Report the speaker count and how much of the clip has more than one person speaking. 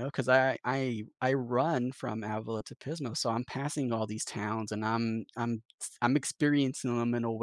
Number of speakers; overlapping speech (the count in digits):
1, no overlap